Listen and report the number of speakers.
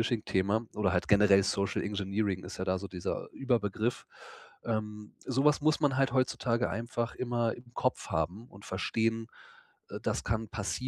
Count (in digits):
1